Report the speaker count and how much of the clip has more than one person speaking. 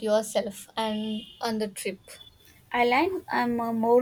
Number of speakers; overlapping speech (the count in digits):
2, no overlap